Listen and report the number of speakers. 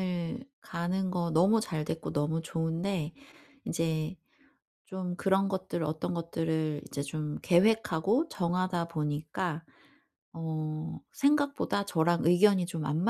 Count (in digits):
1